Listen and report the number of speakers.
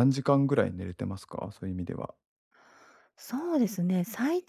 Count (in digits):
2